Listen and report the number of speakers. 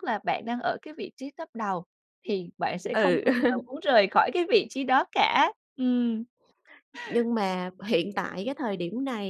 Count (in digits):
2